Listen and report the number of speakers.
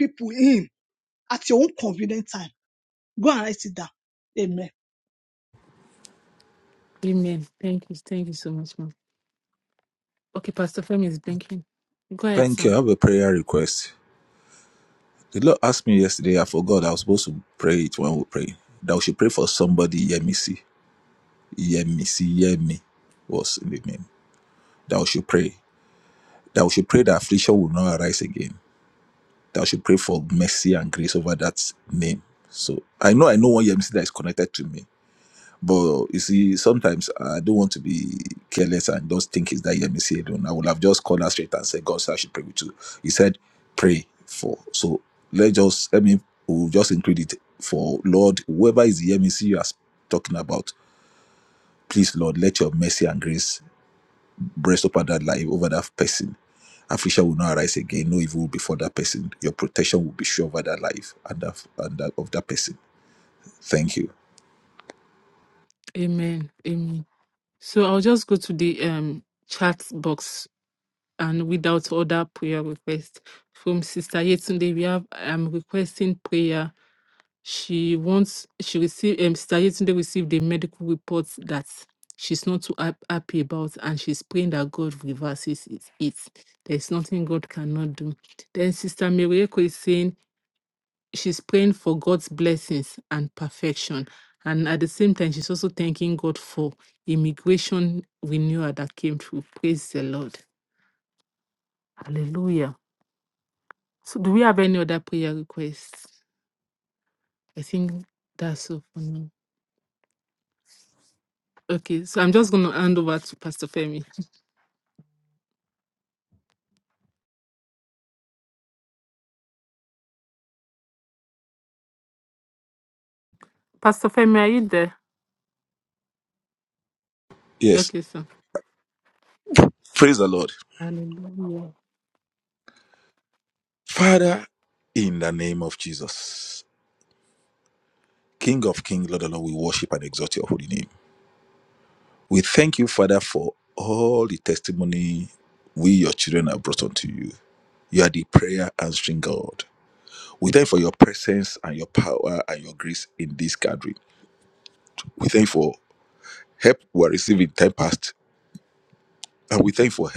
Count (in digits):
3